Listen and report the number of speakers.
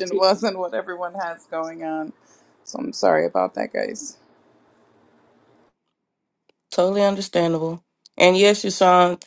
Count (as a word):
two